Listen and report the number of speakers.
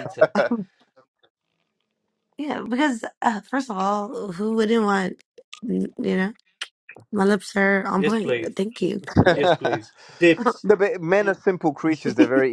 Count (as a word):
three